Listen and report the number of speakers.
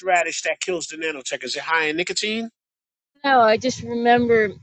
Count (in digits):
2